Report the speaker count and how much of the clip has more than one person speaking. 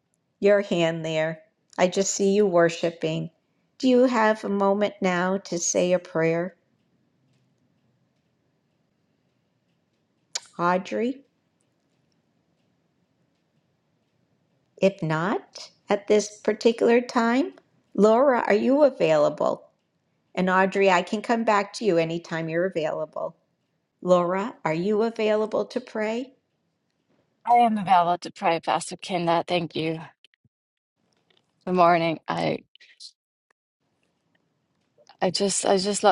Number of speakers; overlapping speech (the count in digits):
2, no overlap